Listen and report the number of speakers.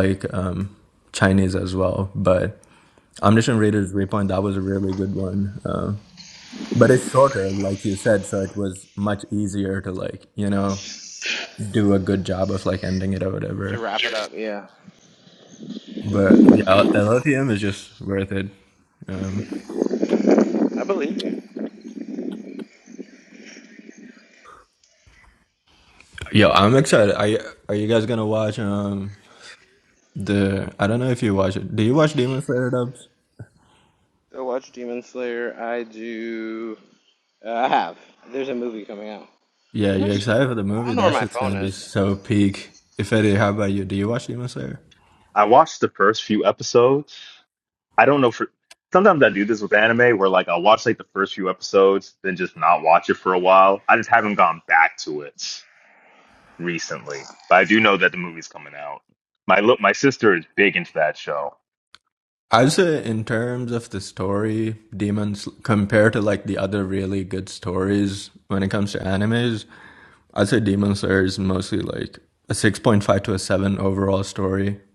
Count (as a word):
three